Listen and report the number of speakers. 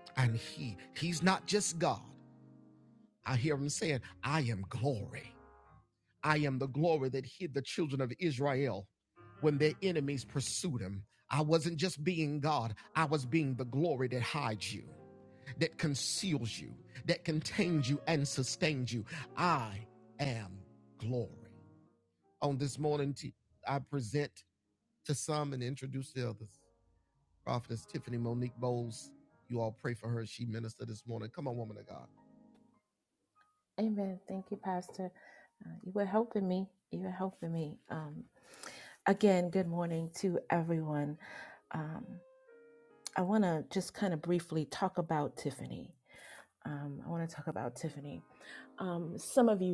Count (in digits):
2